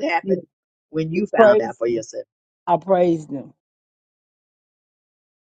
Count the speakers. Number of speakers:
two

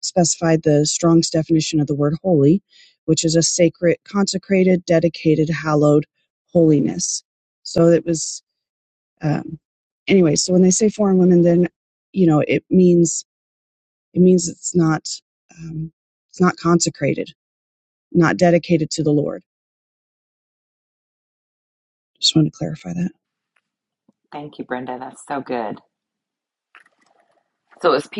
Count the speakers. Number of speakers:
two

